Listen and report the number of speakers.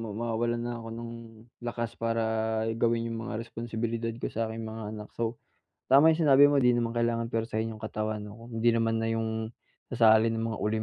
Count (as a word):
one